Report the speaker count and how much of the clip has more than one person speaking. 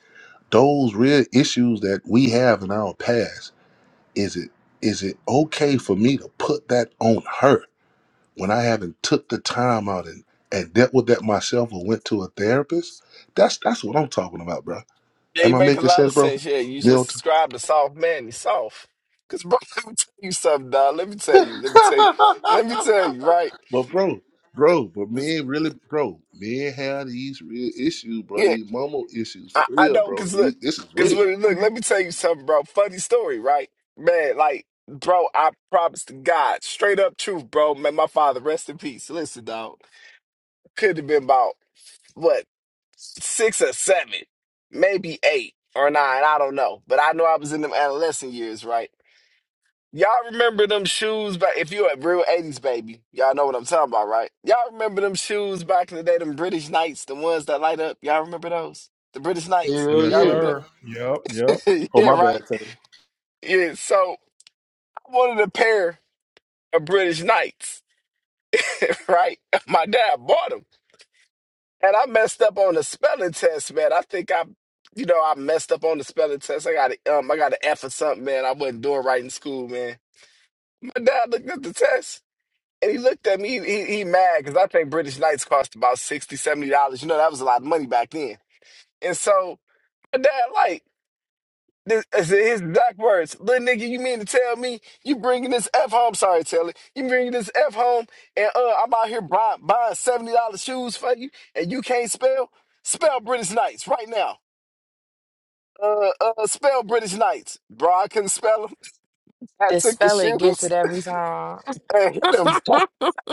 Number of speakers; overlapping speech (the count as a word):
four, about 4%